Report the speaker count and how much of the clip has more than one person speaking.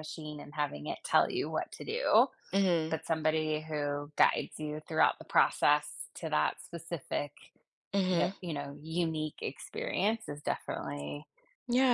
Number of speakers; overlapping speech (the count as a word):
two, about 2%